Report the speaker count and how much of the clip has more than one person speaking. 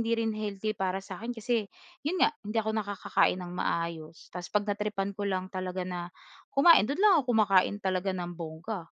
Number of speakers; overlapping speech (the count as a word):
one, no overlap